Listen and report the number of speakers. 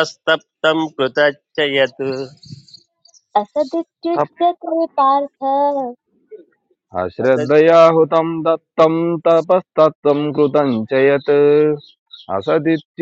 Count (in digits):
3